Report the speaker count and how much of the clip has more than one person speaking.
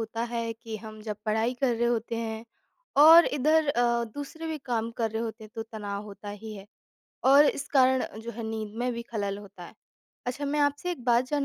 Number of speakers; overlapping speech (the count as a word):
one, no overlap